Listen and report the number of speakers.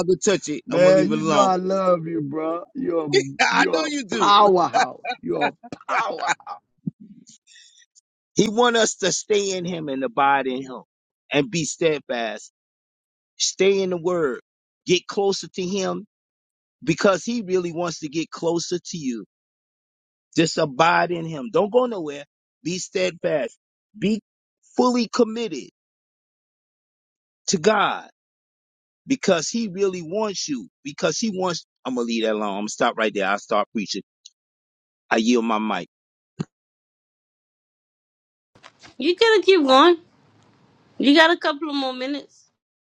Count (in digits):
3